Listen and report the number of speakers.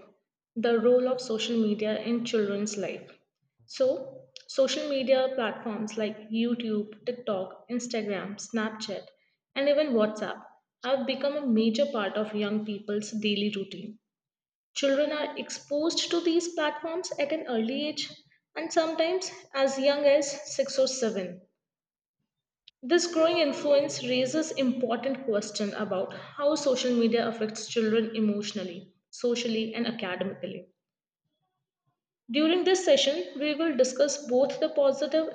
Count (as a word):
one